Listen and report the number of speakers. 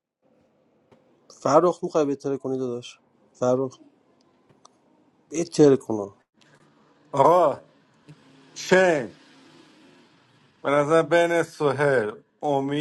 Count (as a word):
two